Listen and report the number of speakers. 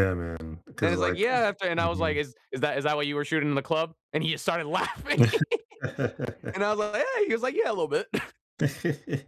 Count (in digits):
2